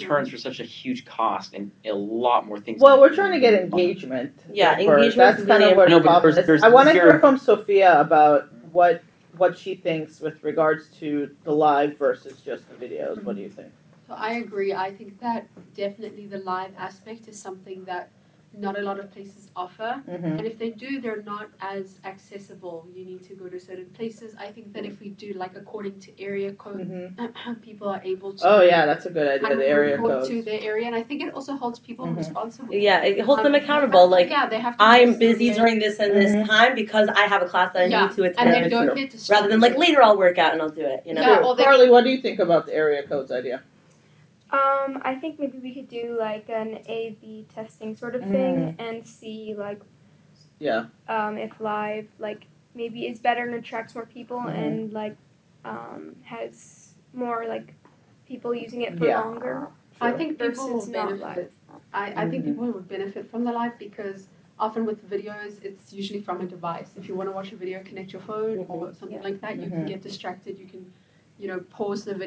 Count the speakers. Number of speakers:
five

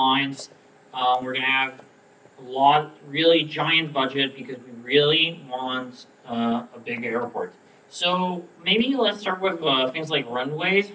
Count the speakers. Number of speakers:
one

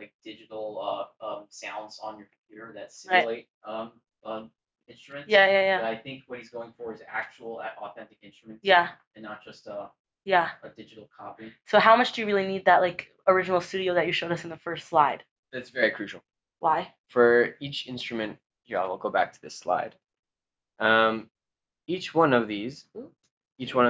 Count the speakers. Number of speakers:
three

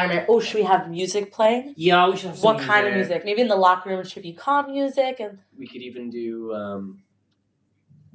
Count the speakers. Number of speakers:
three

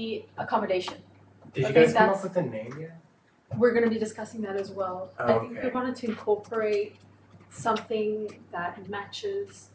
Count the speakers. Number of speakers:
two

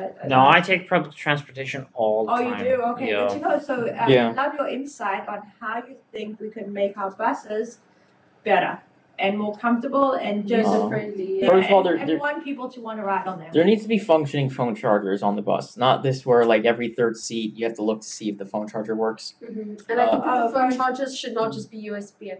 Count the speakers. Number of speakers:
four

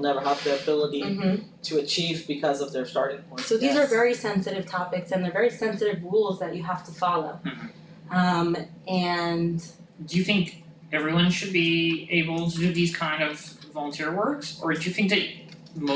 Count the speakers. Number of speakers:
three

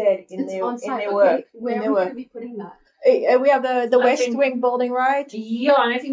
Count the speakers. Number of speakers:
three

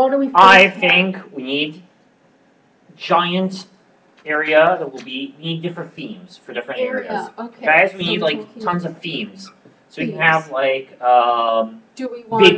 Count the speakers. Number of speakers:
two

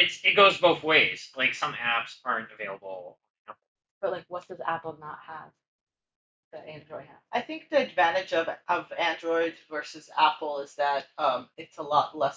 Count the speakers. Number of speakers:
three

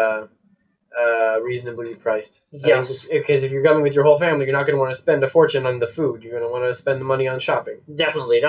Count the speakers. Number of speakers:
two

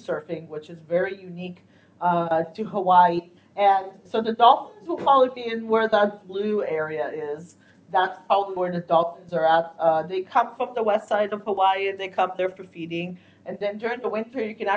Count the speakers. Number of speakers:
one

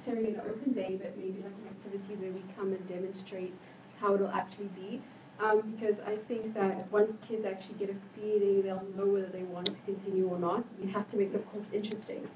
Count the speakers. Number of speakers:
one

